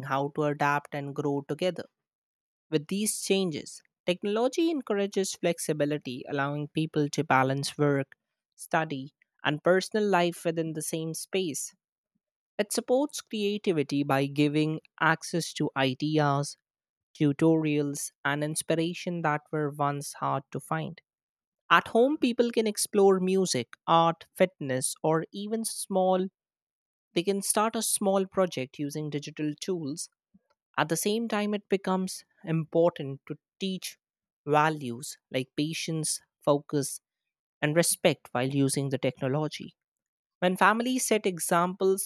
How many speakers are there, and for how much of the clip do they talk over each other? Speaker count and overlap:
1, no overlap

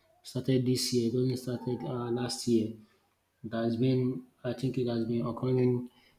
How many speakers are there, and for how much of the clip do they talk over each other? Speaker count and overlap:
1, no overlap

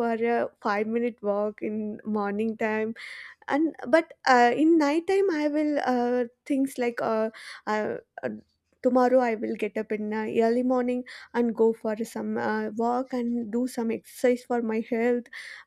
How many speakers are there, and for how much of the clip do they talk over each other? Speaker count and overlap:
1, no overlap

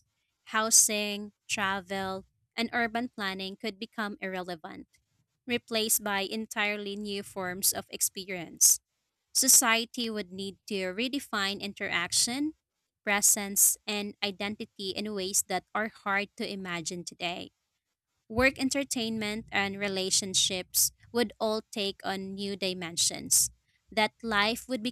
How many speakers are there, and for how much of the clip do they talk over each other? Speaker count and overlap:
1, no overlap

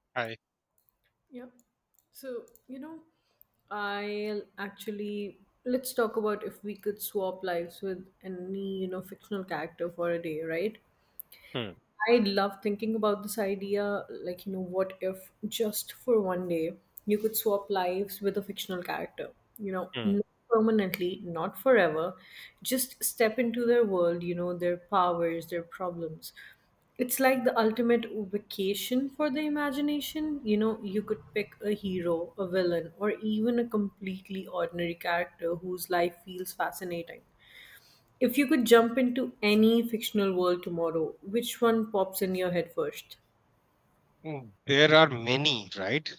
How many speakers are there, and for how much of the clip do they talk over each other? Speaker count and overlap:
2, about 1%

